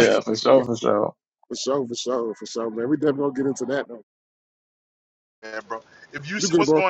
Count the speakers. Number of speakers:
3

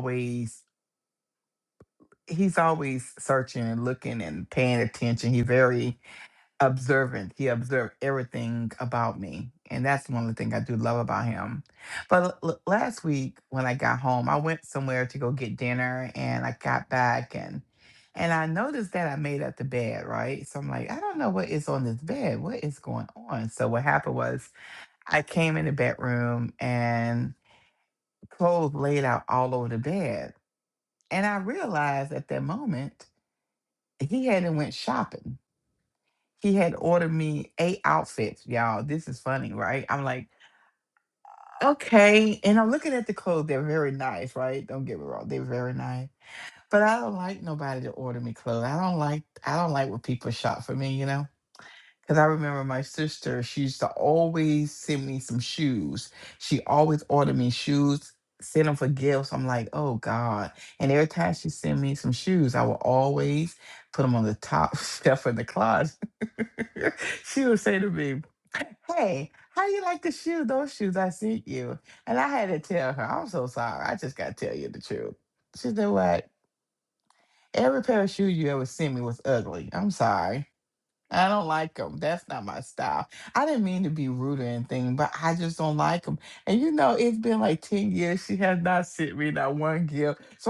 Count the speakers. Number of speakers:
1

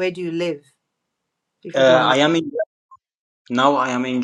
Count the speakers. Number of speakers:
2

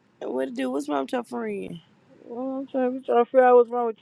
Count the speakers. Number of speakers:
2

